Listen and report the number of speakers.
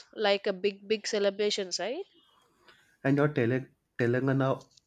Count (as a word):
two